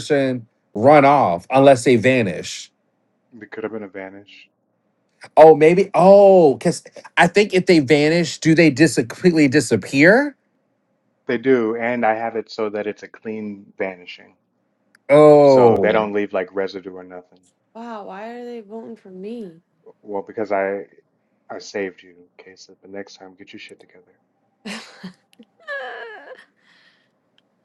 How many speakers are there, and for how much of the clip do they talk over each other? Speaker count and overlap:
3, about 1%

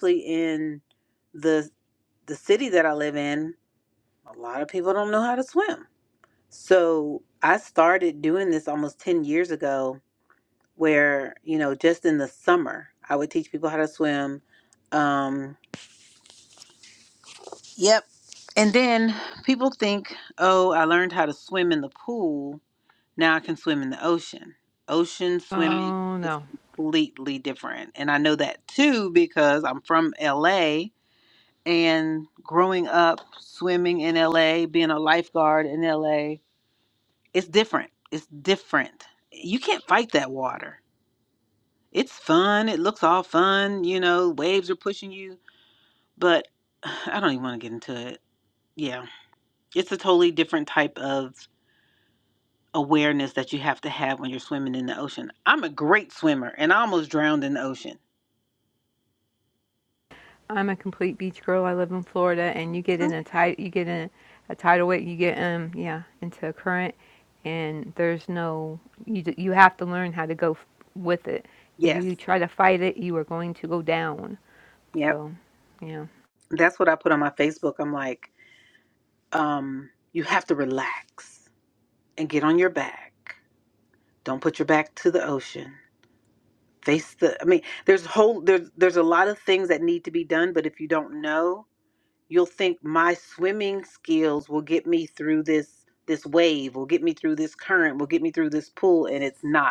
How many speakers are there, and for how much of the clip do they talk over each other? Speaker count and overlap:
2, about 1%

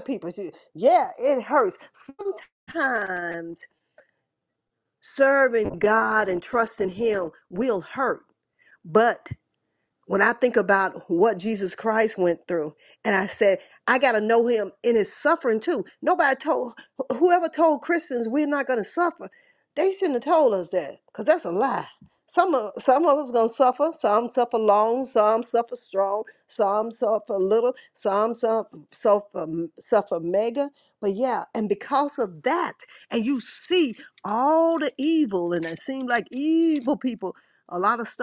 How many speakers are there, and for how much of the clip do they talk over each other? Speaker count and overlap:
1, no overlap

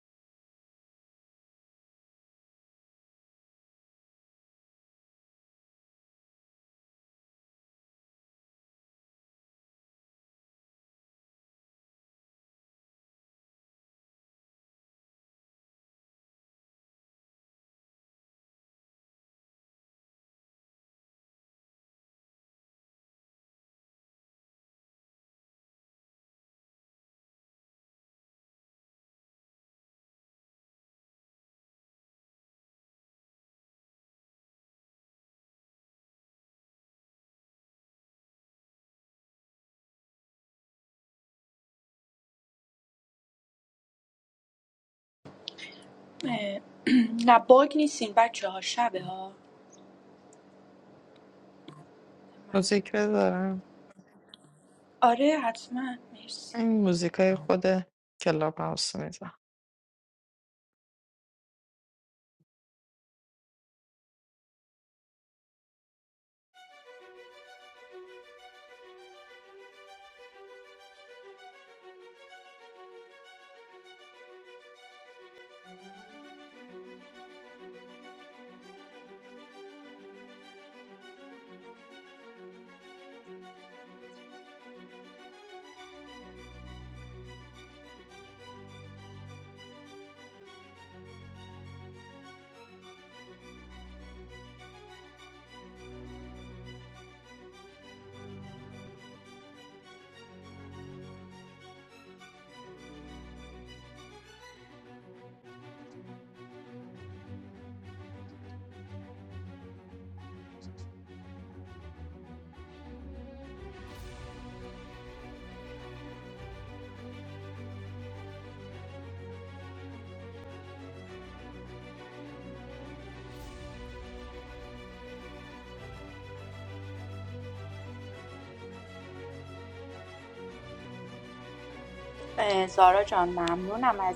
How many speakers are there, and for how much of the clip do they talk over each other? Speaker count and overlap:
2, under 1%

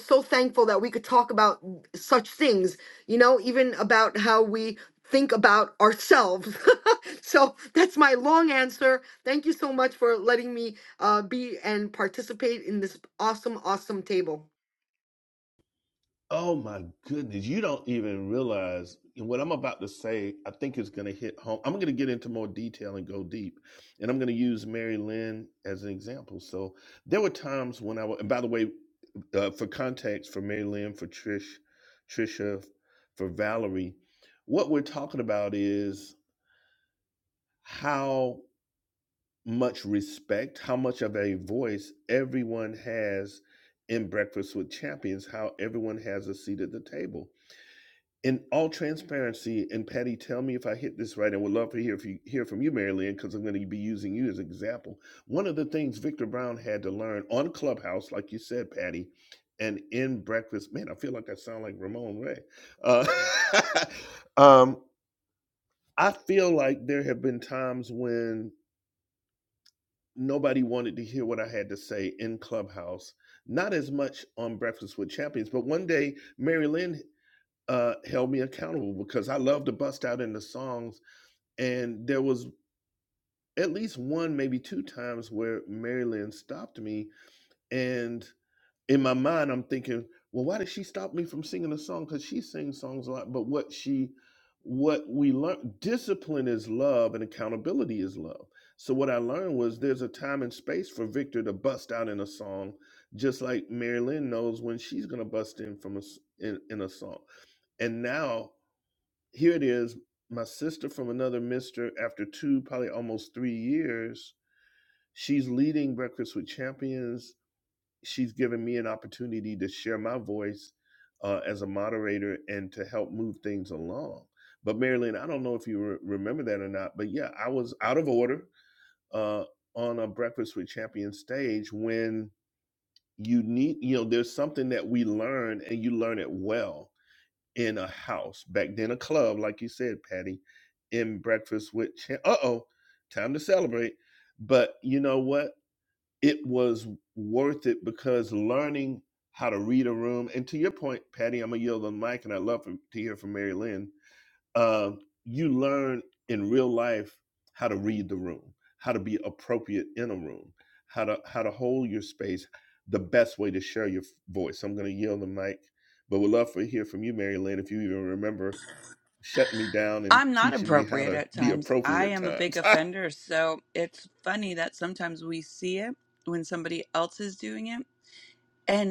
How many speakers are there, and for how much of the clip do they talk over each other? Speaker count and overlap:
3, about 2%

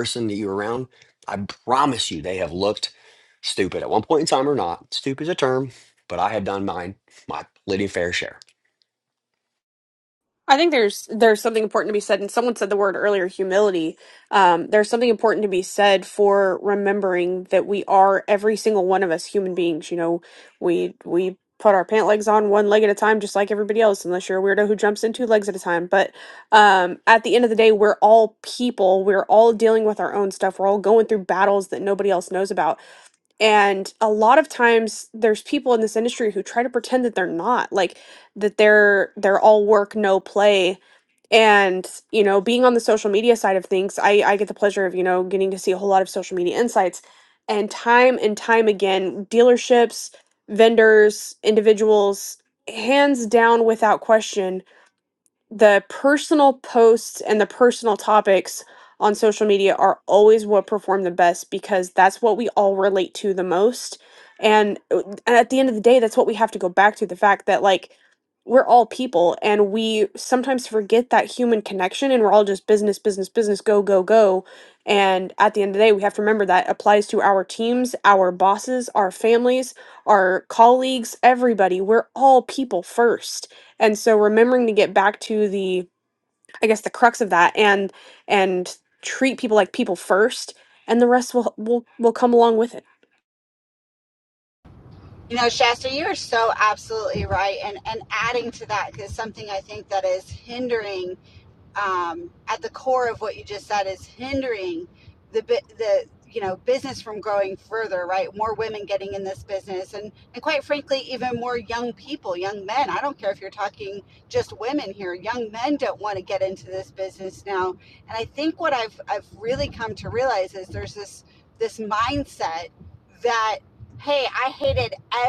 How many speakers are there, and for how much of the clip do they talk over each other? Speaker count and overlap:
3, no overlap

